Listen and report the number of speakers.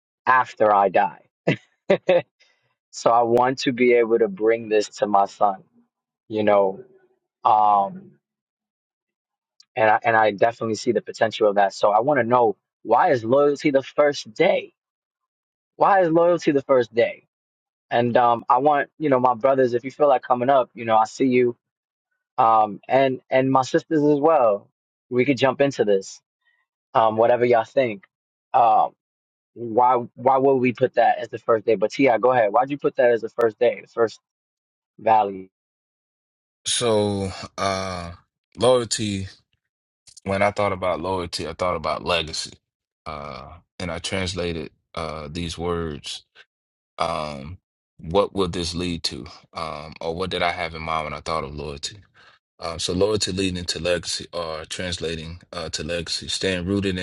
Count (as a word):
two